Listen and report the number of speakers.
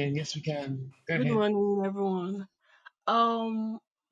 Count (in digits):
2